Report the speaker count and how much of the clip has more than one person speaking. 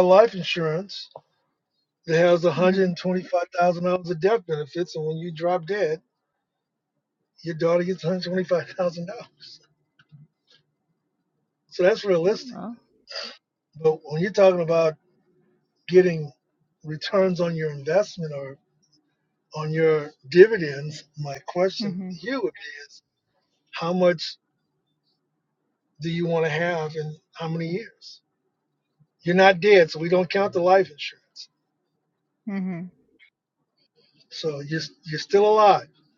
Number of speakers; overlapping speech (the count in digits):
2, about 2%